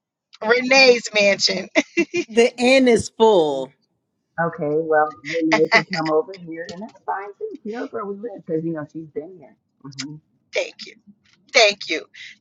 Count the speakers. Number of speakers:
3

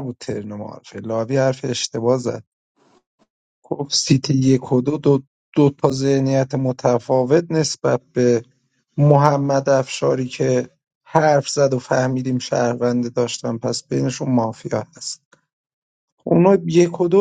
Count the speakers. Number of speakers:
1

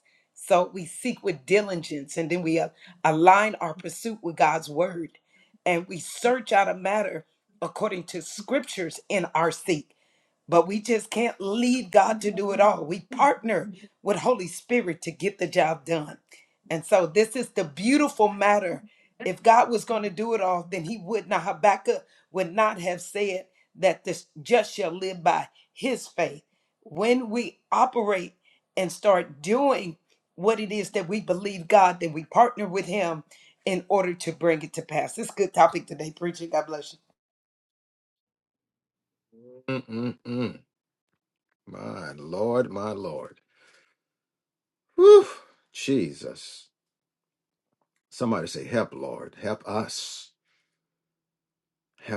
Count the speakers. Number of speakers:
2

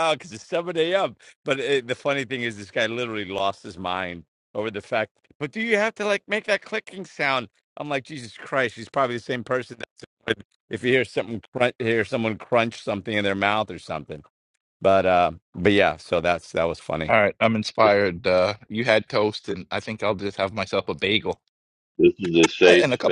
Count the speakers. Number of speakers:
3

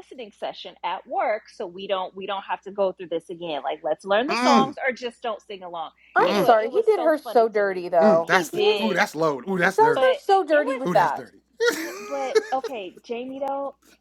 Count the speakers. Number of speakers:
3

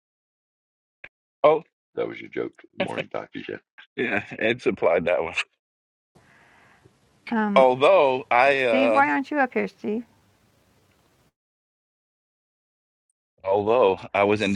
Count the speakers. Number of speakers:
3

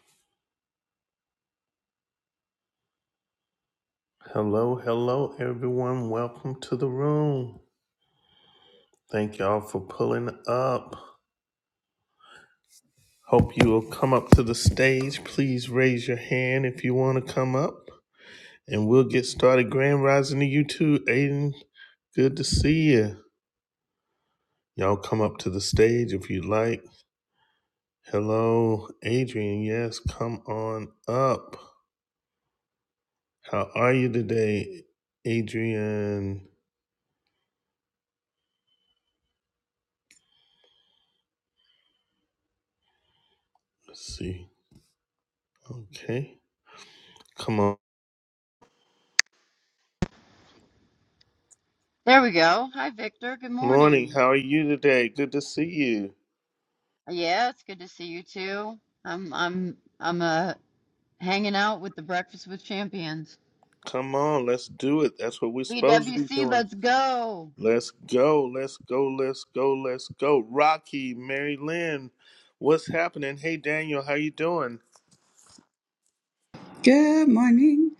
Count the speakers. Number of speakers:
3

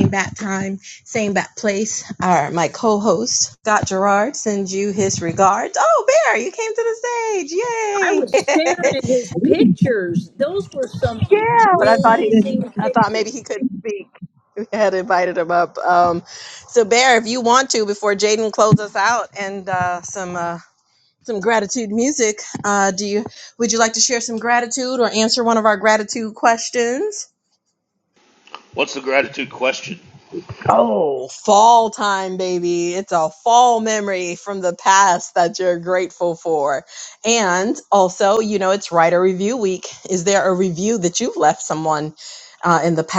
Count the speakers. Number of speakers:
3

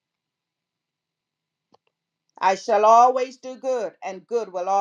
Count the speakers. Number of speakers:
1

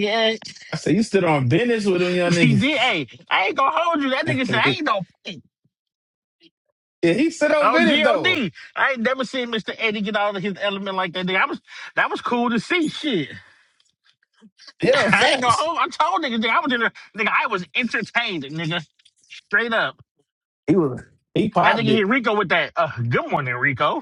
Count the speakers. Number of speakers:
2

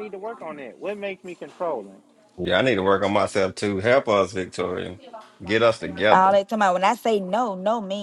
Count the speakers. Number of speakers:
3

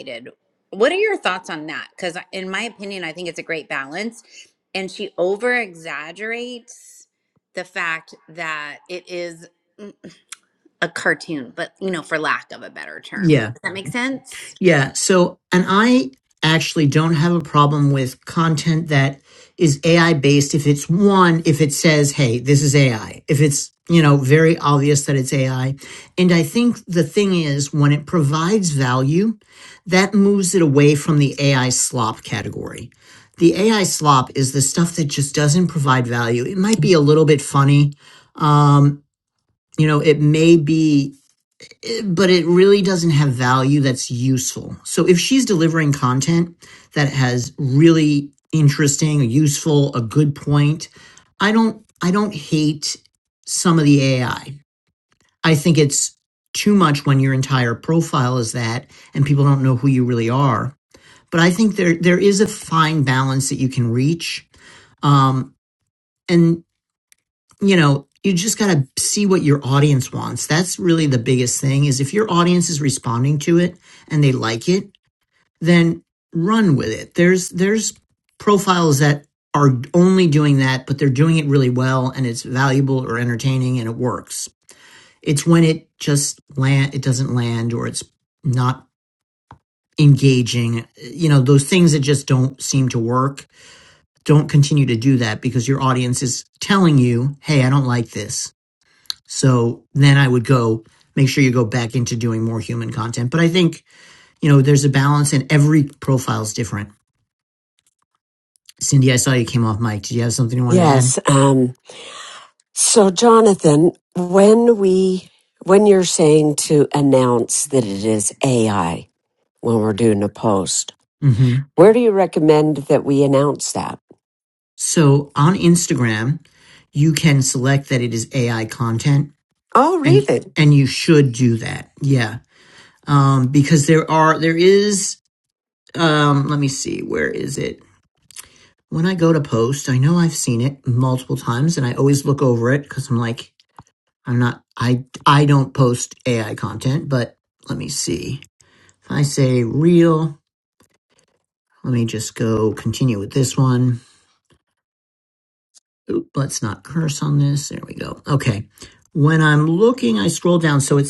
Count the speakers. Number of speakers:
3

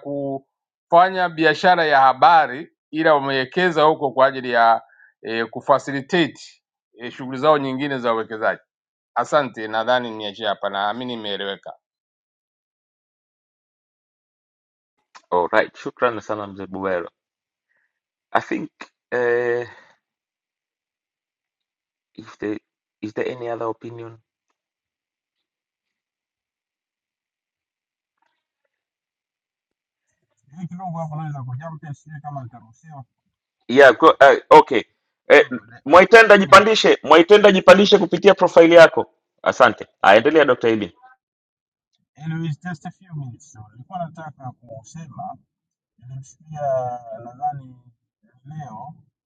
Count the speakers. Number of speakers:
3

